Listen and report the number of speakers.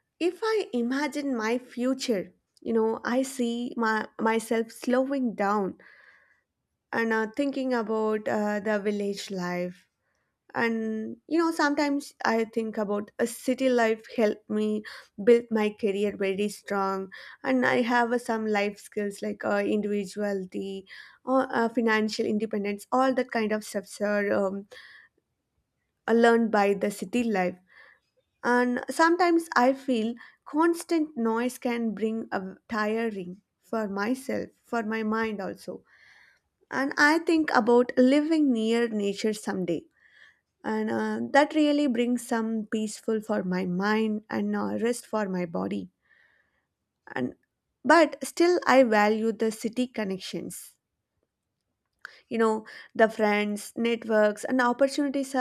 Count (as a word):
one